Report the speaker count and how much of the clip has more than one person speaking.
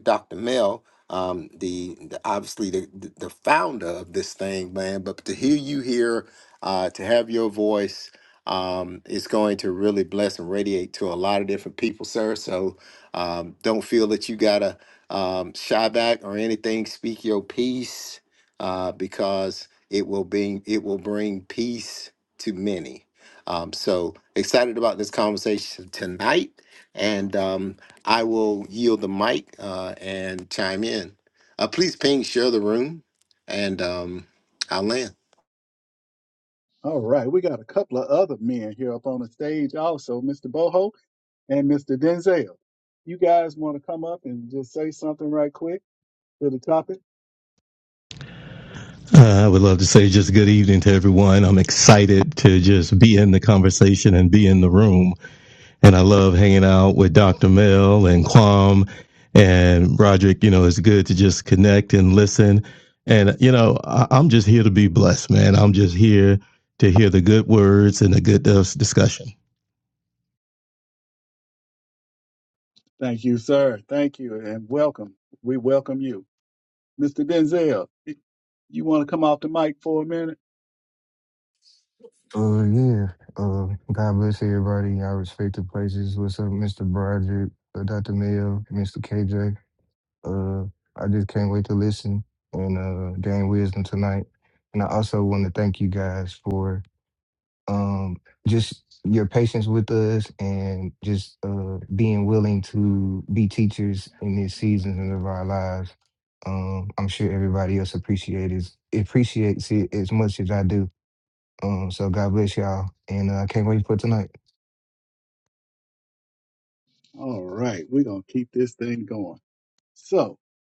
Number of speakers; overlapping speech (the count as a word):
four, no overlap